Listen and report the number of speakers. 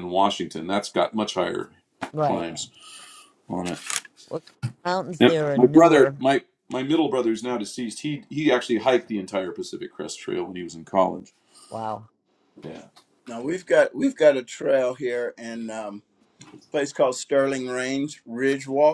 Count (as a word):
three